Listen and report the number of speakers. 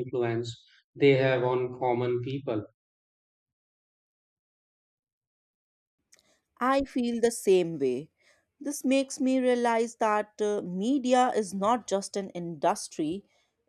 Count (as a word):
two